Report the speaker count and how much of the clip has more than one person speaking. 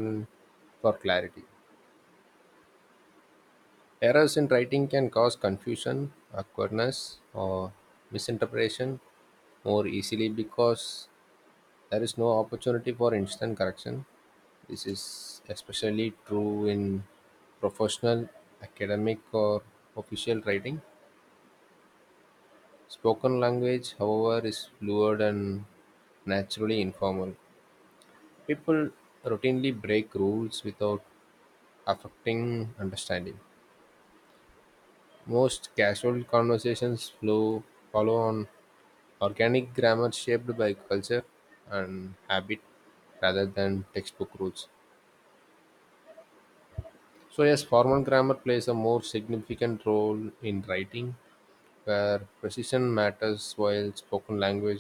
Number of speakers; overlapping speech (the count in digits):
1, no overlap